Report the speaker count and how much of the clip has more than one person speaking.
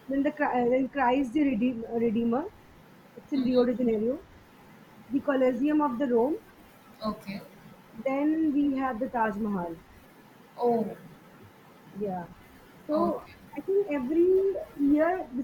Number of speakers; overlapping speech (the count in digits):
2, about 3%